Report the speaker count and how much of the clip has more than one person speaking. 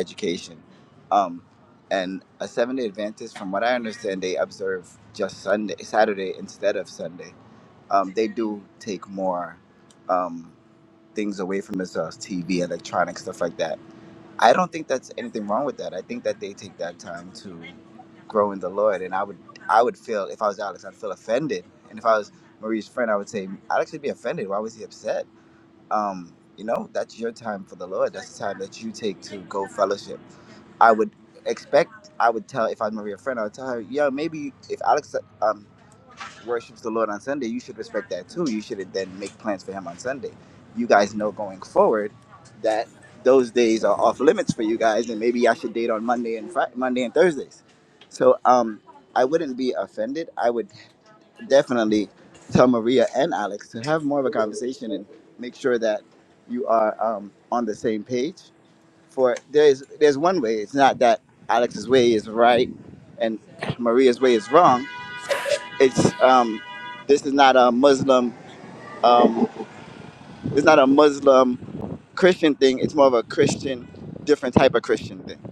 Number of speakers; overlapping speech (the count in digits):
1, no overlap